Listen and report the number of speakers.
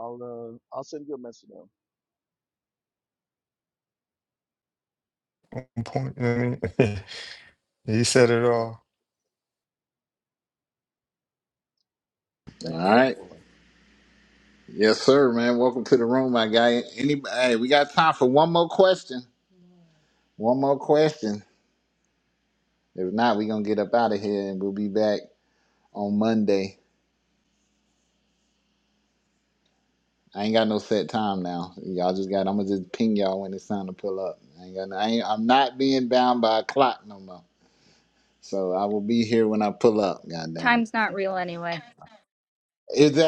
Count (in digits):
4